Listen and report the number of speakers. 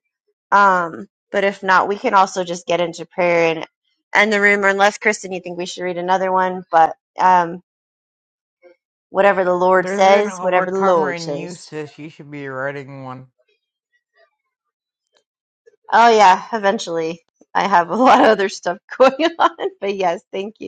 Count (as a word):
two